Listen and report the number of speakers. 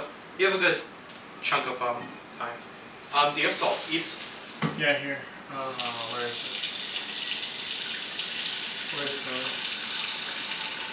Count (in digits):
2